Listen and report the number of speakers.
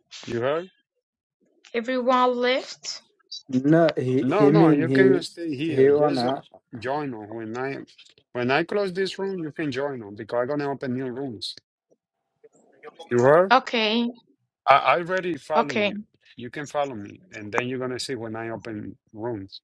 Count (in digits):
3